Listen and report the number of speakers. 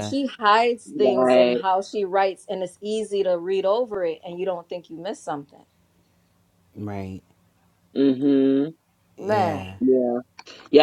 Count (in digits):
3